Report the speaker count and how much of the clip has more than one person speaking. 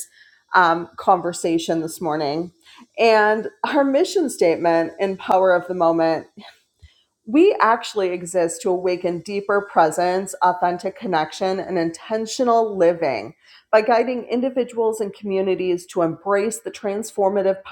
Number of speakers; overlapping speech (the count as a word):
one, no overlap